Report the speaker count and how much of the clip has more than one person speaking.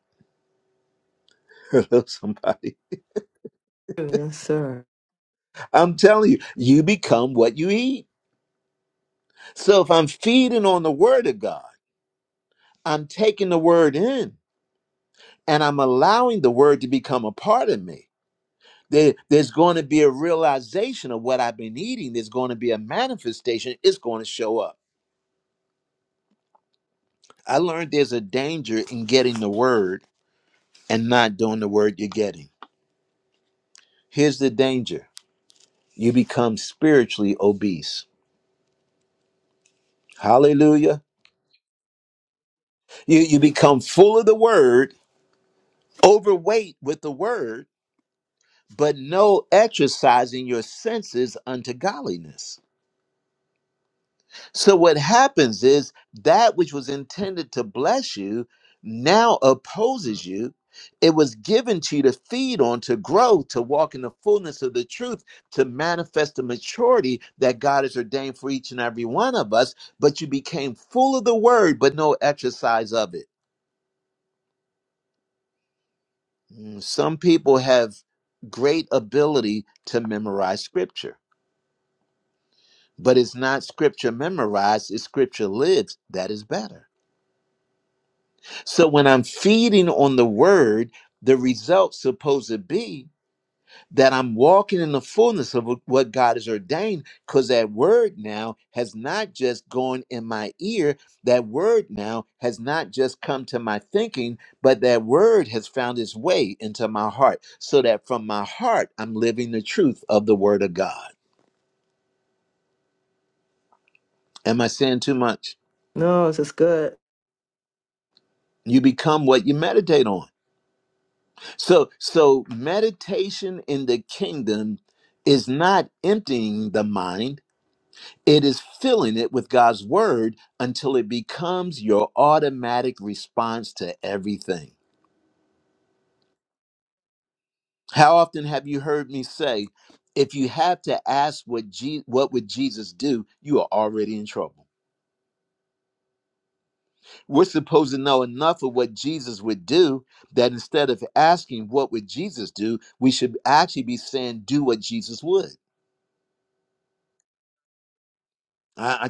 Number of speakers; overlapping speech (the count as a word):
two, no overlap